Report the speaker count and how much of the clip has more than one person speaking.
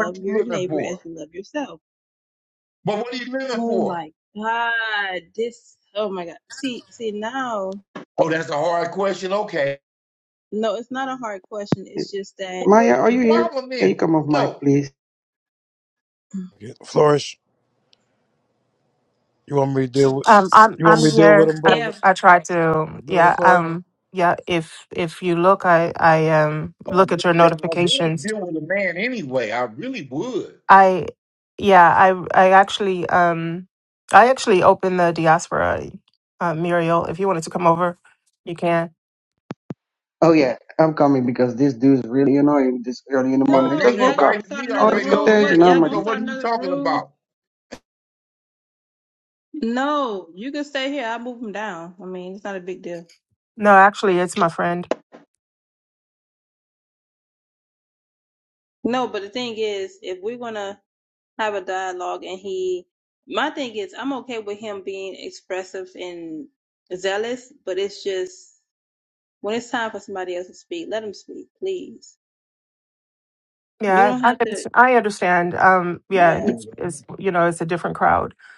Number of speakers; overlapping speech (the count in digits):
5, about 14%